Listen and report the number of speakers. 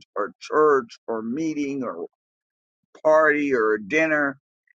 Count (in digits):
1